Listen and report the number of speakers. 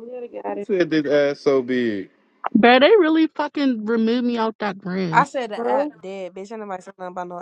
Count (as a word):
four